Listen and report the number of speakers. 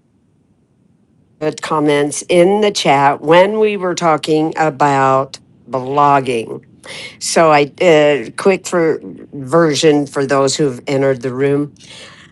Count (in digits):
1